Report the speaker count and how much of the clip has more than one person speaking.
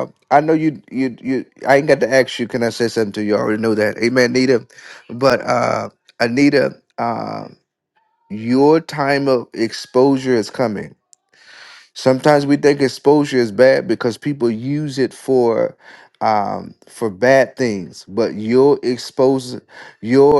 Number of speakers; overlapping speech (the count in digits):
1, no overlap